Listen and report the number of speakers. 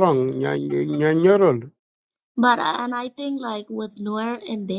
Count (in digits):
2